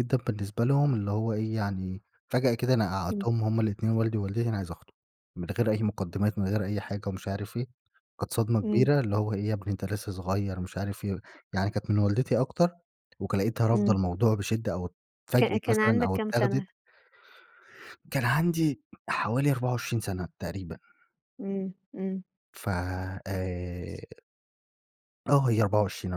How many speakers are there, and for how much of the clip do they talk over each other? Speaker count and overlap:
two, about 7%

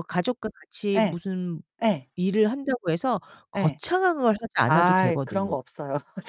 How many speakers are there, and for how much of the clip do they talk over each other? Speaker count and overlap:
two, about 21%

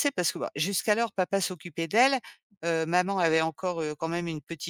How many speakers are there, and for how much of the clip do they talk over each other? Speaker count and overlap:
one, no overlap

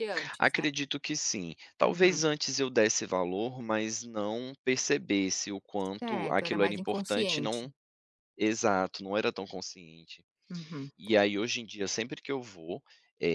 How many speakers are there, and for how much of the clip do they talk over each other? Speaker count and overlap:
two, about 18%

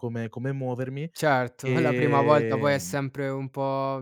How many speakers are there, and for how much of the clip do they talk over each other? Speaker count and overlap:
two, about 25%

